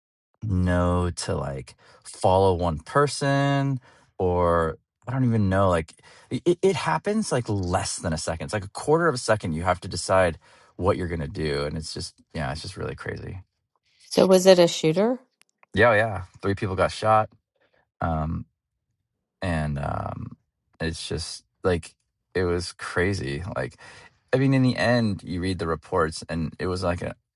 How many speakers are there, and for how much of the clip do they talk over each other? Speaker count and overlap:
2, no overlap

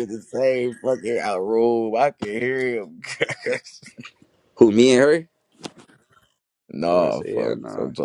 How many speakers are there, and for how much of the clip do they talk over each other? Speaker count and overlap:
2, about 13%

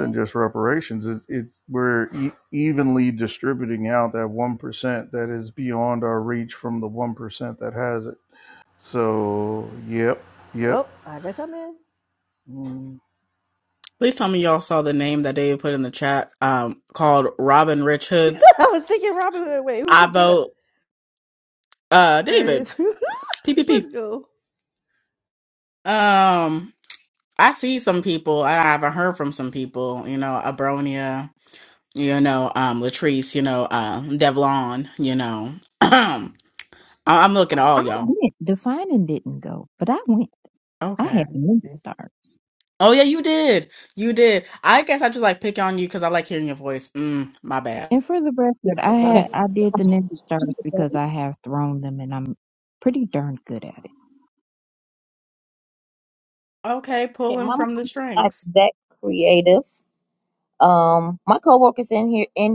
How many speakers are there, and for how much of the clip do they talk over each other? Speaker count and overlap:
5, about 5%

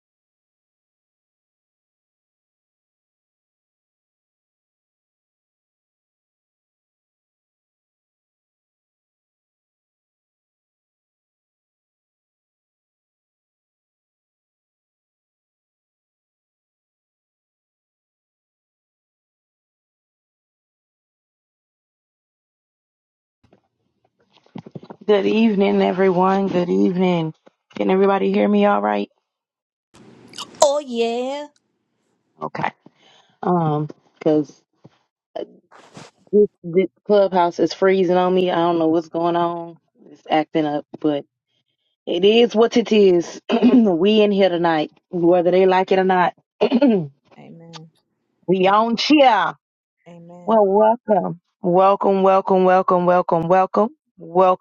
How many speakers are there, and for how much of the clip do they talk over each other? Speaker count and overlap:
2, under 1%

